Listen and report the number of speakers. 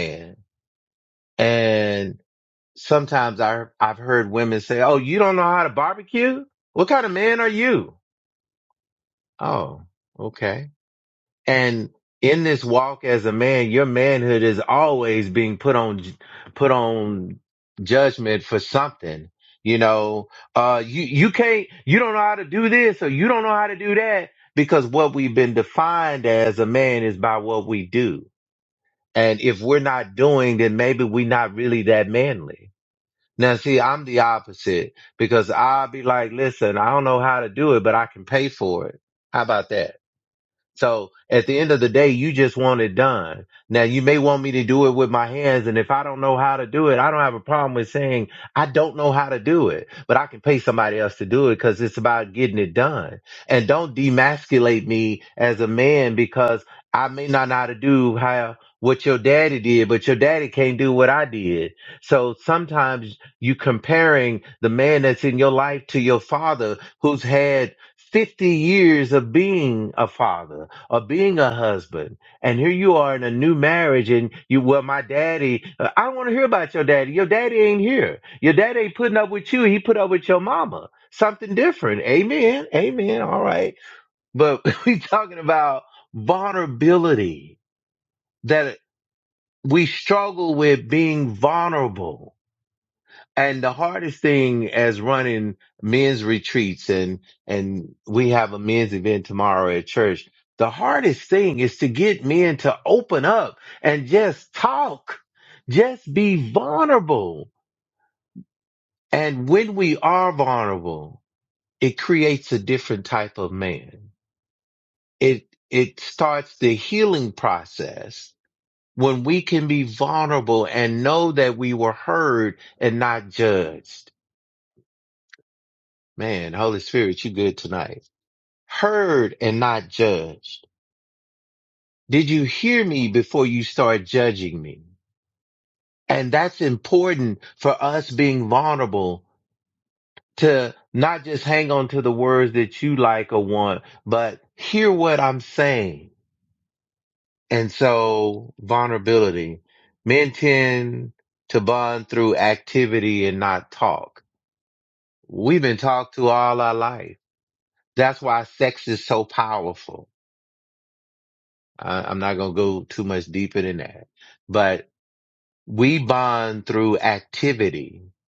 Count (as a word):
one